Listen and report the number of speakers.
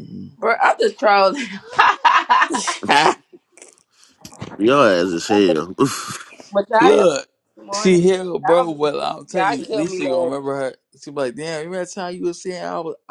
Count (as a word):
three